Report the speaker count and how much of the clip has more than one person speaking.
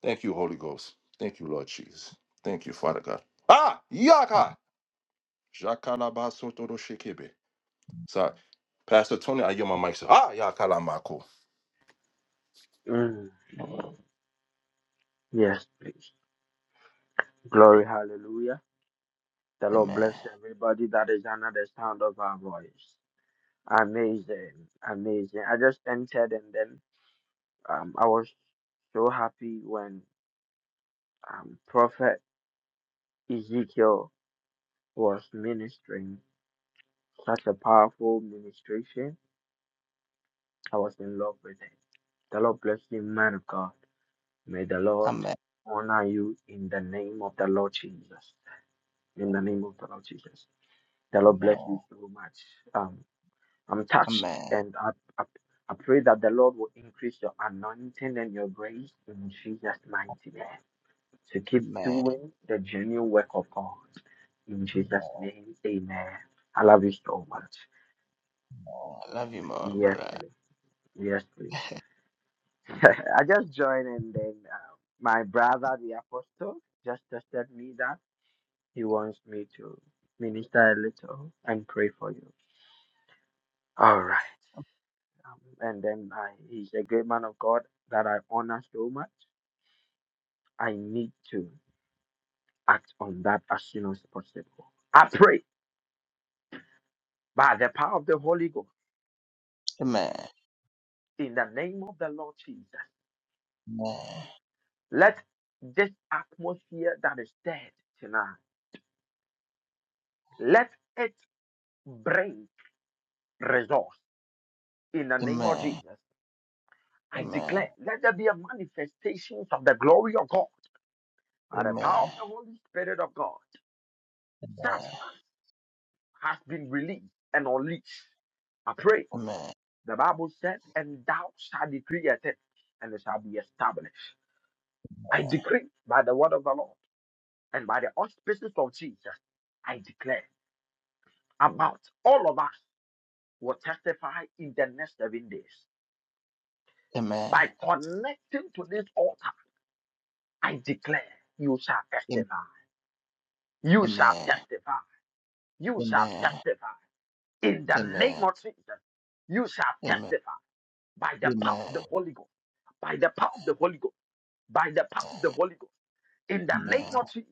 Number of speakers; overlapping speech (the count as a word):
three, about 4%